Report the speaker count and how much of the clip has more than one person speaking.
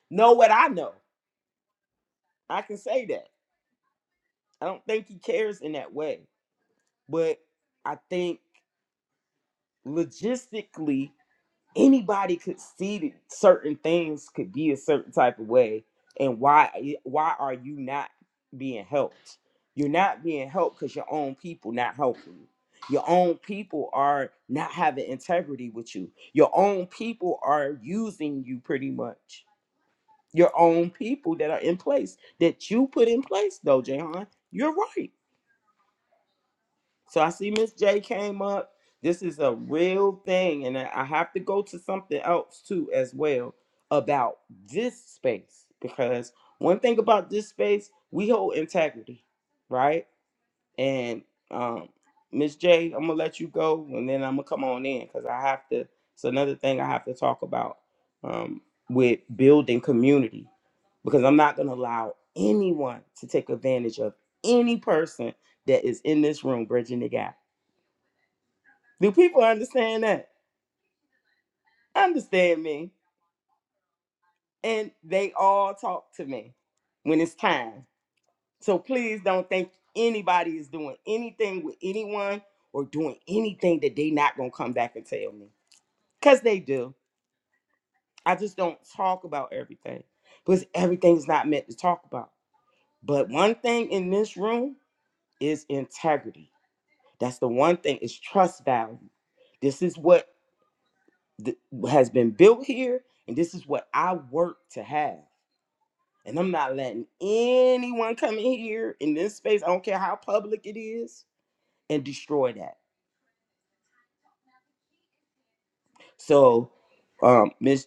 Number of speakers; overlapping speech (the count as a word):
one, no overlap